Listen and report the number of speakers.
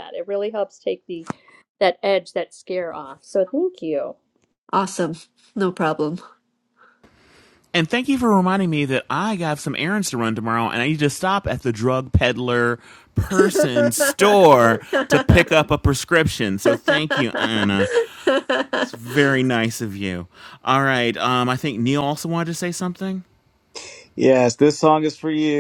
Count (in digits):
4